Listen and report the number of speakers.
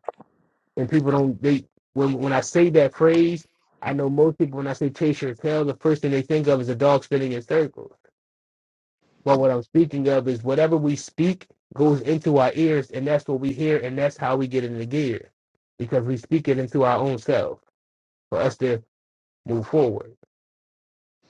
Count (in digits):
1